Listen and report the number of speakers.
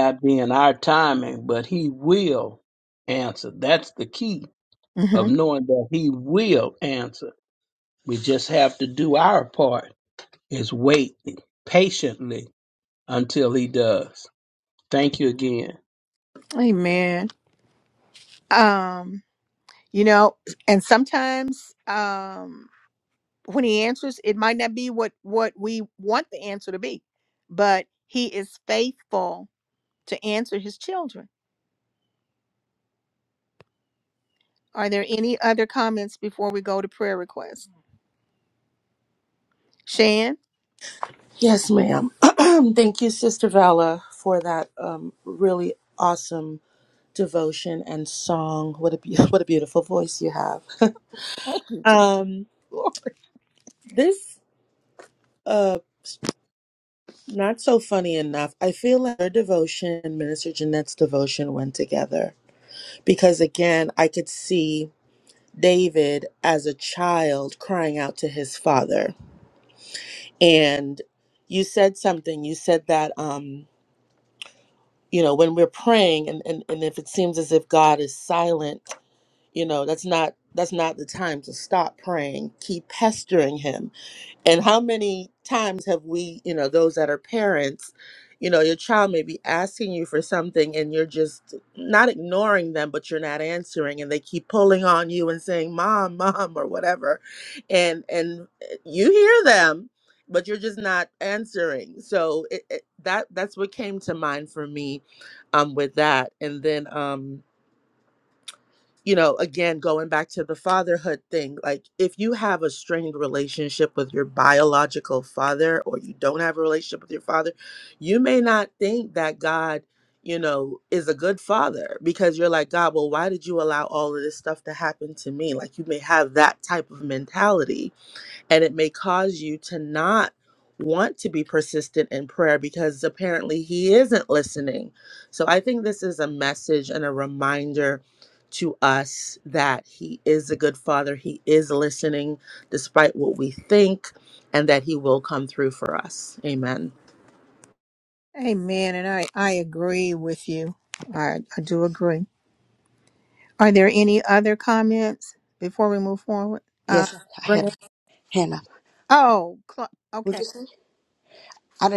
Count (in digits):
4